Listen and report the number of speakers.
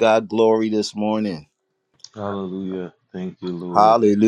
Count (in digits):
2